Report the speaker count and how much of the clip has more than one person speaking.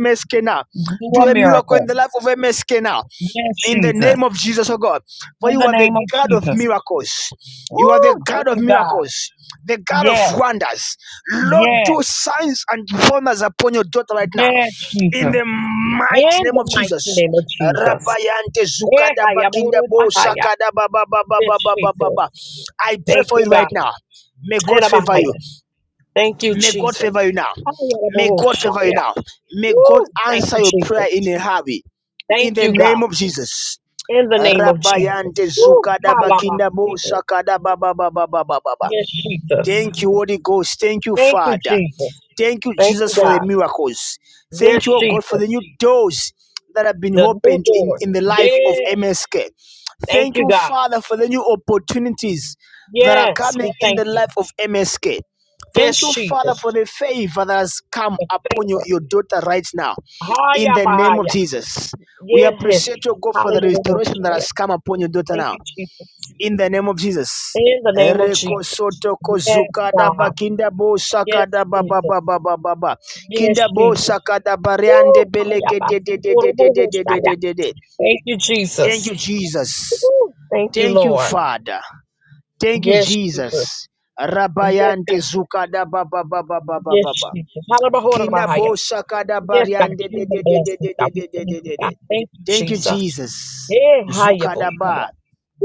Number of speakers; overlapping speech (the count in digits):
2, about 39%